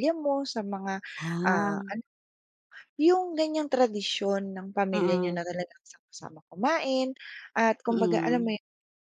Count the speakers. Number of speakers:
2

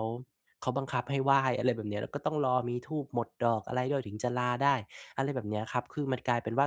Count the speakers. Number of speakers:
1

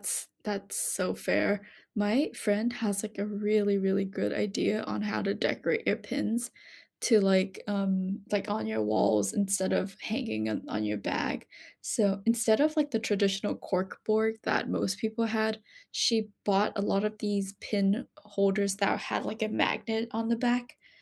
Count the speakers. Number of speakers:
1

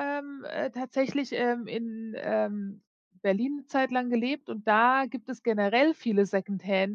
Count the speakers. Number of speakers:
1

